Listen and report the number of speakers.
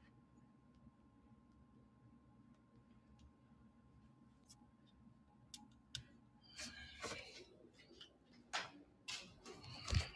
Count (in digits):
0